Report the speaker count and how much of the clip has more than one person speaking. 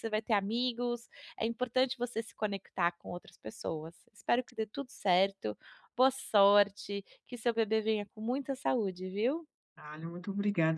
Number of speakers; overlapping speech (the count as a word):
two, no overlap